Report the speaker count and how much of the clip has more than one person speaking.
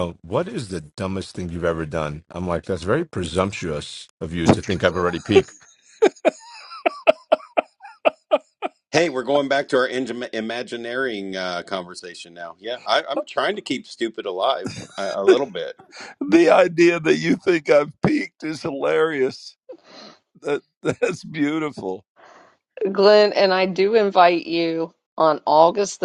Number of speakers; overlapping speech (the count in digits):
4, no overlap